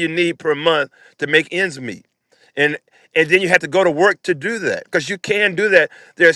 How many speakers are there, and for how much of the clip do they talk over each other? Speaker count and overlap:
one, no overlap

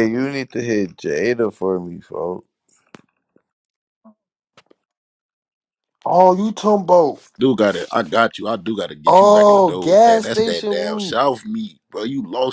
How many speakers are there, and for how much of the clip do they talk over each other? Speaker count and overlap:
three, about 17%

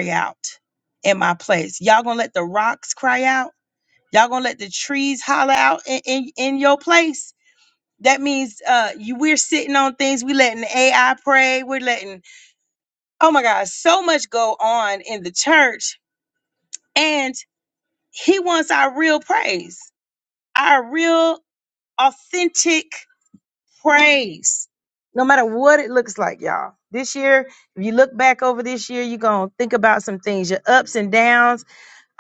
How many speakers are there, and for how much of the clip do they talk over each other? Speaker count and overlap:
one, no overlap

